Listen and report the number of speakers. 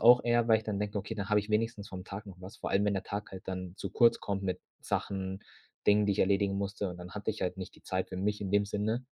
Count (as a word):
one